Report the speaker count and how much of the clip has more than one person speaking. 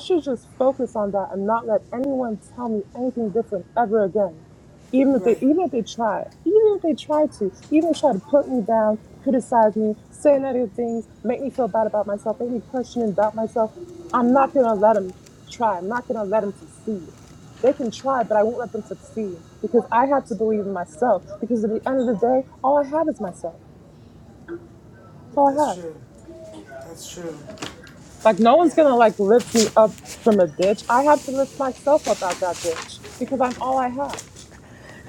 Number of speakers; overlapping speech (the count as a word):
two, about 2%